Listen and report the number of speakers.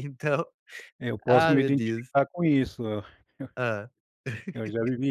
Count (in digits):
2